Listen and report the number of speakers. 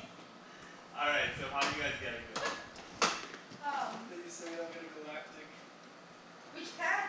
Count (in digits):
3